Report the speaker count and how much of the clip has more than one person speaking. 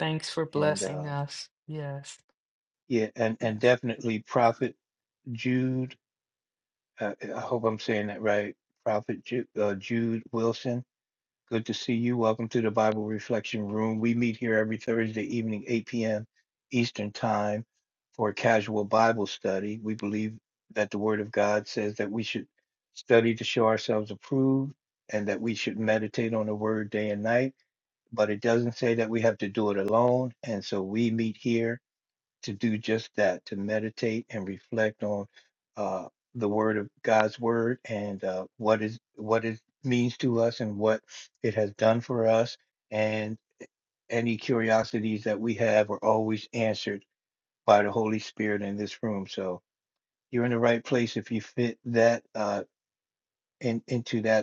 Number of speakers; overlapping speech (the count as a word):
two, about 1%